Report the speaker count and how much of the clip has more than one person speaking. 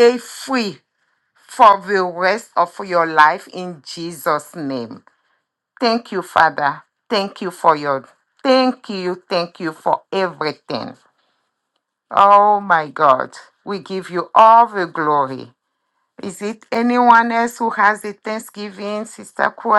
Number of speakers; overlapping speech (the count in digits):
1, no overlap